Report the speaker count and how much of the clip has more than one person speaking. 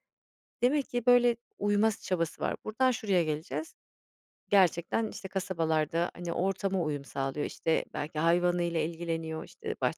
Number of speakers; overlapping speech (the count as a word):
one, no overlap